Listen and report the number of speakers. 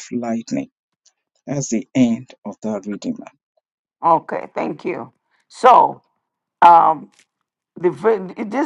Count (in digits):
2